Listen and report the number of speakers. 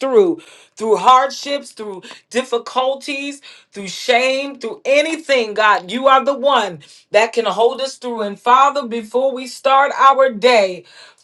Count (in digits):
1